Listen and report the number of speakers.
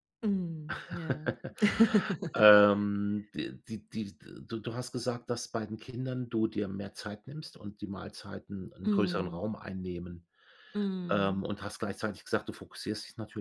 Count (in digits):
2